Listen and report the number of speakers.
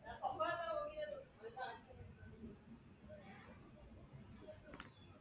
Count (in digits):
0